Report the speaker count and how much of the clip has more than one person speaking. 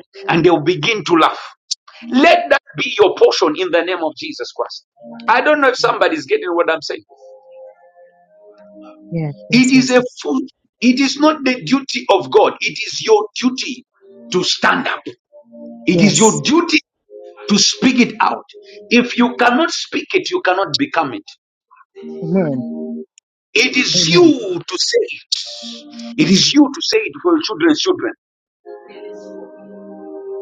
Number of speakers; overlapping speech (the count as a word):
two, about 3%